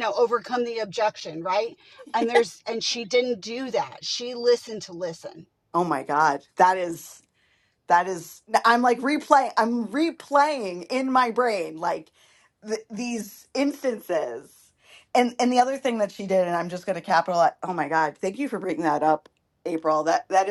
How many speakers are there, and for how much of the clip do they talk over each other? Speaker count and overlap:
two, no overlap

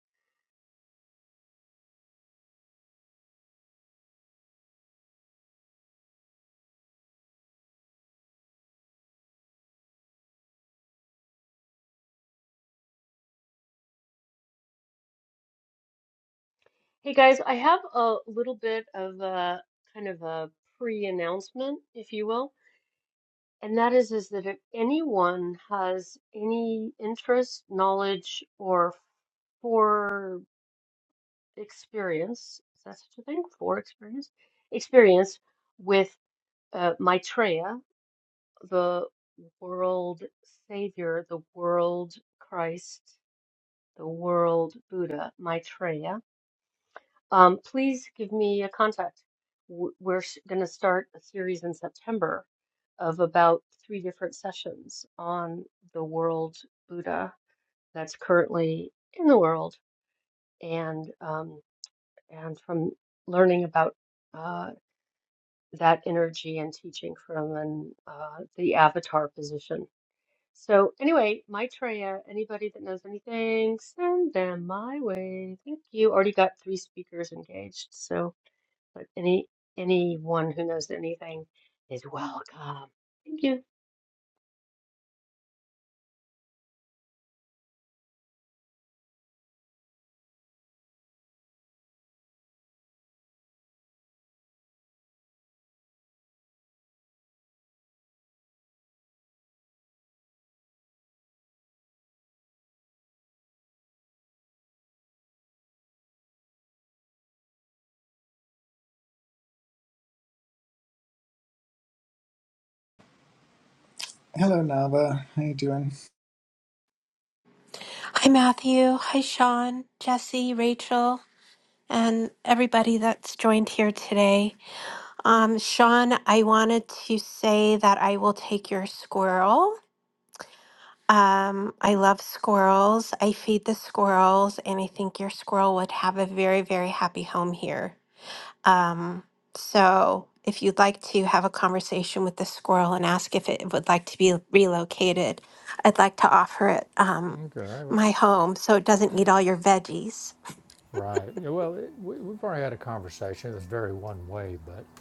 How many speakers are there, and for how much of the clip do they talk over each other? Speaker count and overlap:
four, under 1%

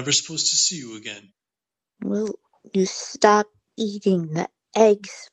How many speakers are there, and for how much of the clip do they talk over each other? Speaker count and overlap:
two, no overlap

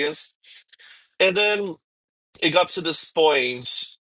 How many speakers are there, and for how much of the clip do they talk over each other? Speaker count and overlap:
one, no overlap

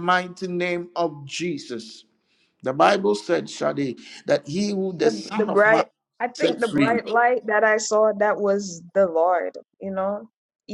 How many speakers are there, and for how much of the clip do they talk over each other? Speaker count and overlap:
two, about 13%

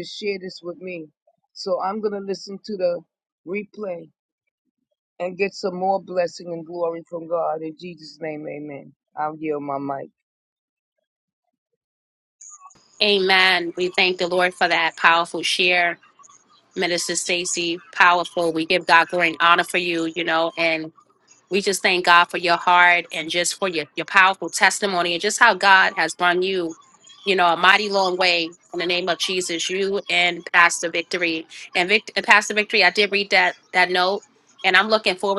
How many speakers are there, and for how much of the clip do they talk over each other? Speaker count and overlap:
two, no overlap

